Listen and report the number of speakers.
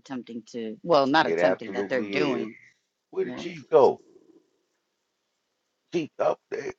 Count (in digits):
2